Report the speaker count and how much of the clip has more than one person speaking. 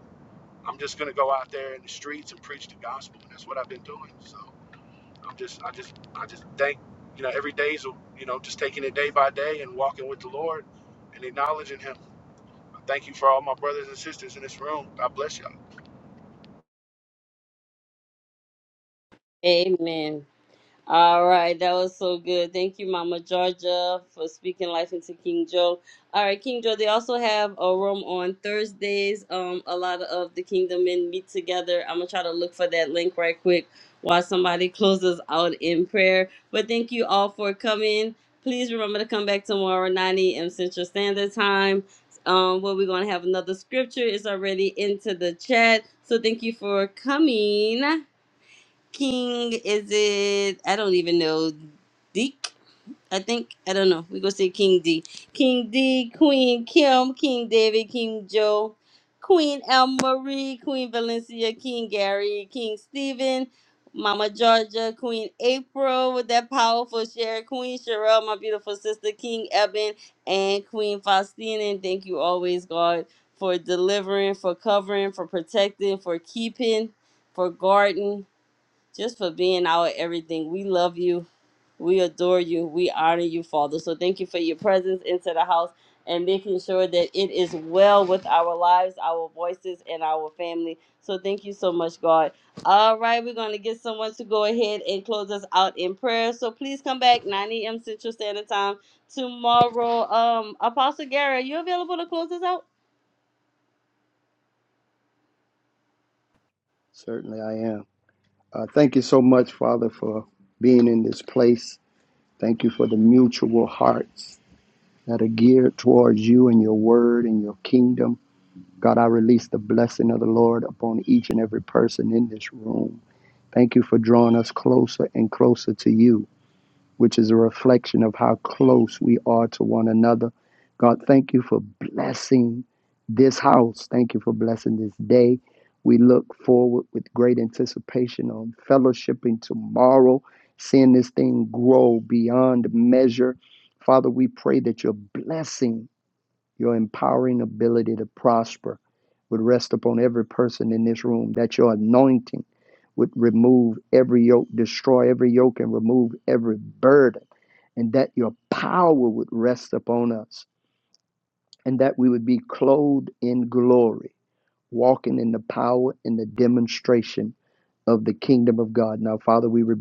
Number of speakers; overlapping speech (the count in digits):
3, no overlap